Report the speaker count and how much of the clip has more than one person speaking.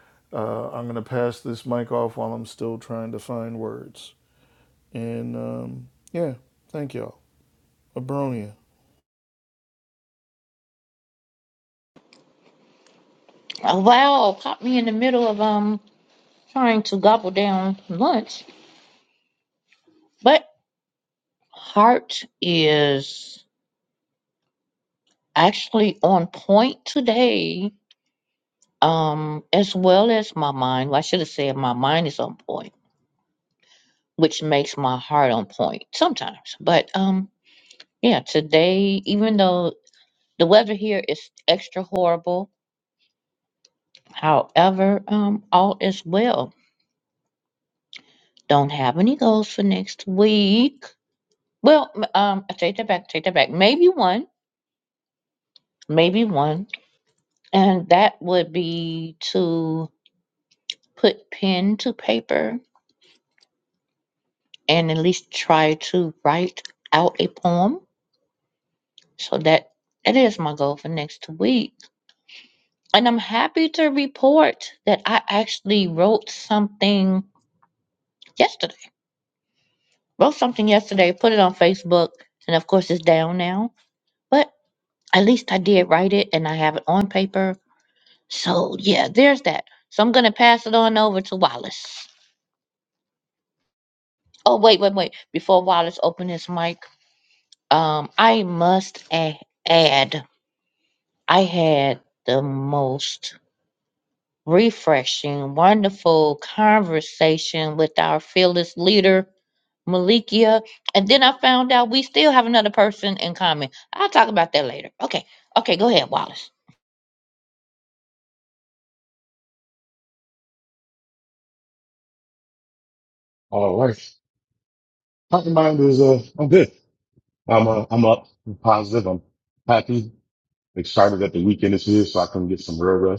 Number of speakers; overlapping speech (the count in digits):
3, no overlap